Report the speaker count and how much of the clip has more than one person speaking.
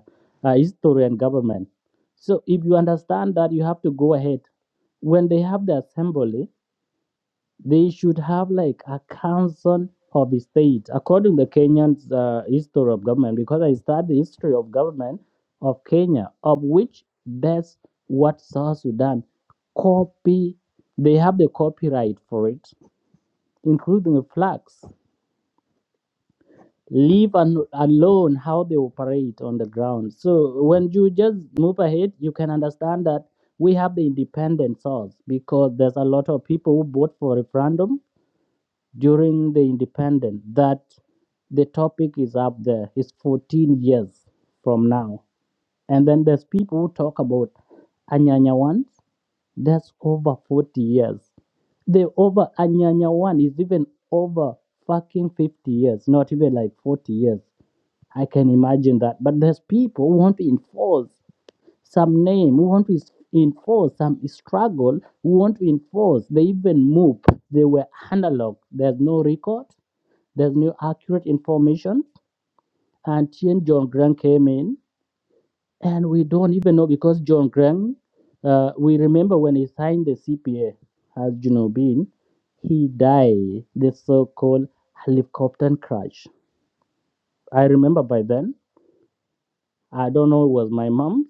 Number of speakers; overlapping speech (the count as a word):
one, no overlap